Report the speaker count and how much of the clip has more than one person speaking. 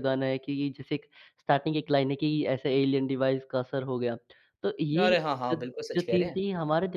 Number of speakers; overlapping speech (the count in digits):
2, about 11%